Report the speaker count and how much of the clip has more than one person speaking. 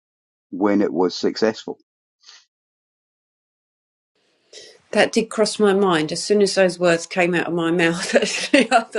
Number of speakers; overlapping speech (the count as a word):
two, no overlap